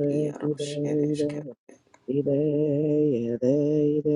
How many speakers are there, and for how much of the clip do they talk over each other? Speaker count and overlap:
2, about 22%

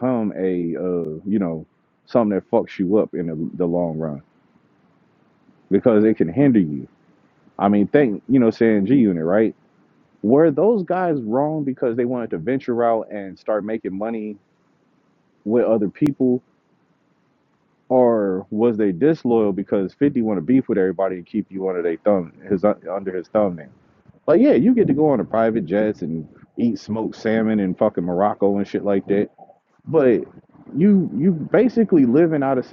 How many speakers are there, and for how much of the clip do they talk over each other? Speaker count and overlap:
1, no overlap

